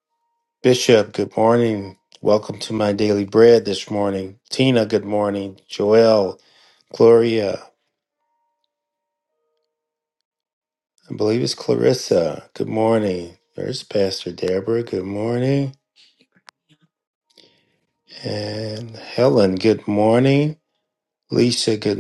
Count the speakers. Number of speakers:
1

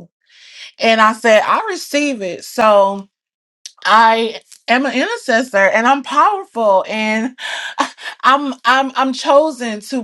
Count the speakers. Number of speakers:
1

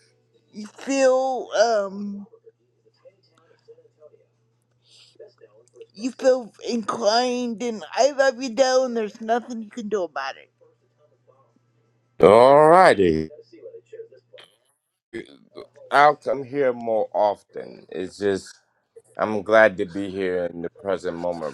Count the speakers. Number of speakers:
2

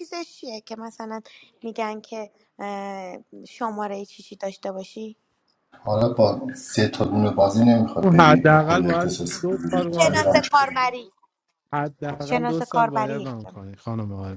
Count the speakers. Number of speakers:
3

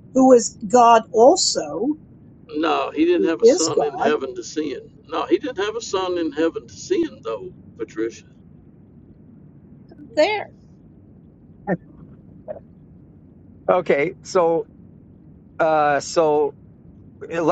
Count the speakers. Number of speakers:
3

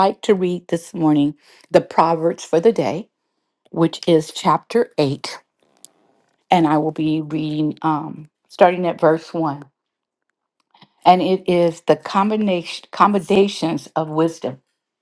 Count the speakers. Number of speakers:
1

